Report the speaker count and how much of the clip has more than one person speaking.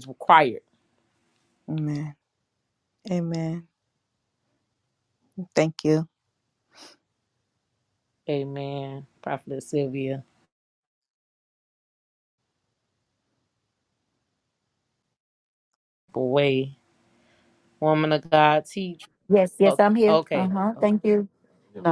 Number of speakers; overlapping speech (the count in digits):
3, about 1%